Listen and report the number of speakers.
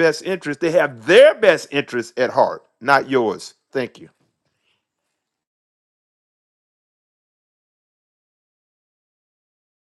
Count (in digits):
1